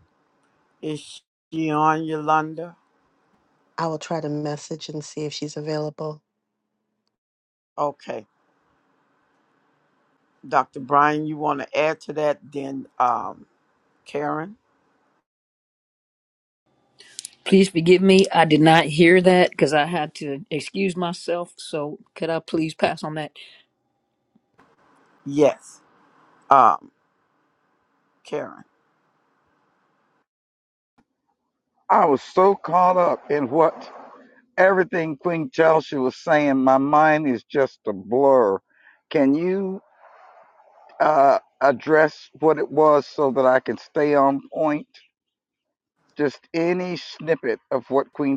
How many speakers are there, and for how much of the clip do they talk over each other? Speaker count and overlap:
4, no overlap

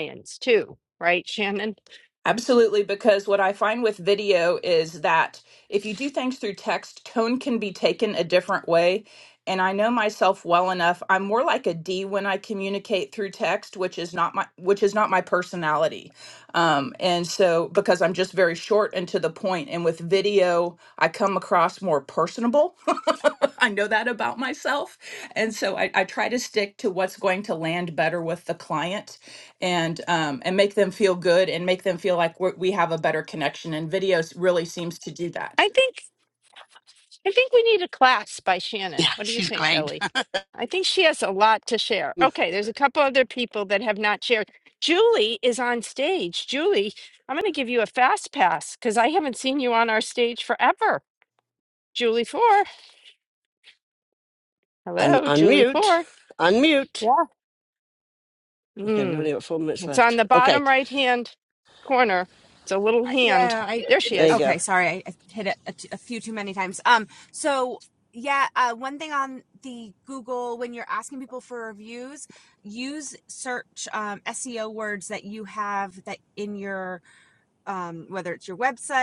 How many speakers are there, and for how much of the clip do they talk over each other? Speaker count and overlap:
4, about 5%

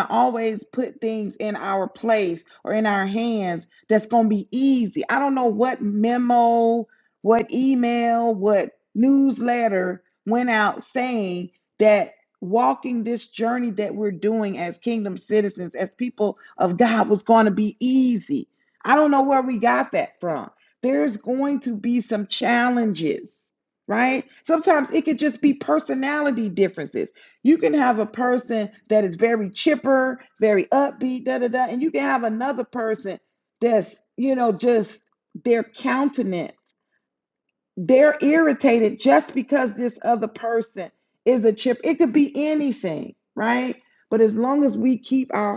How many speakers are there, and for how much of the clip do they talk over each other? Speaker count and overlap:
1, no overlap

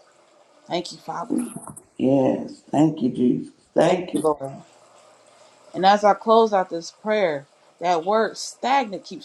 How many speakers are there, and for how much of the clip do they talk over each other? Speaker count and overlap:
2, about 5%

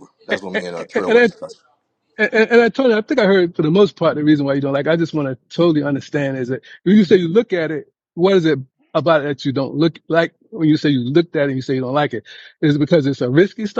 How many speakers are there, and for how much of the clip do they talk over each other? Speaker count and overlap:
2, about 3%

